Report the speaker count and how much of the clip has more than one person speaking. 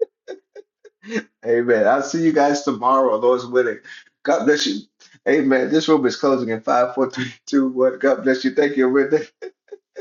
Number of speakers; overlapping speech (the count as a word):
one, no overlap